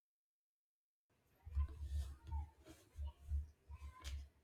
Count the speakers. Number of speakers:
zero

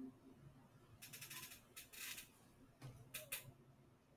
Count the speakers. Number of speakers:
zero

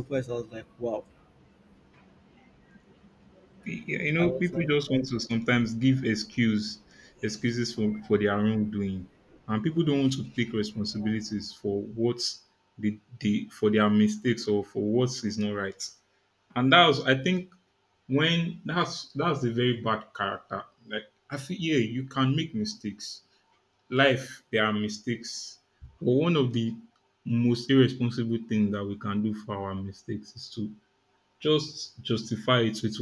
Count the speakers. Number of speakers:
two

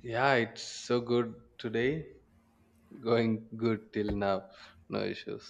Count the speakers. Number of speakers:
one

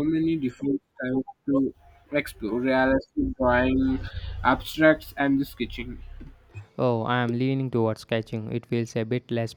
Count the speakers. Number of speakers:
two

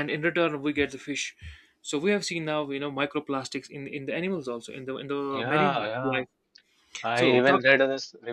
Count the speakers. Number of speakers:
two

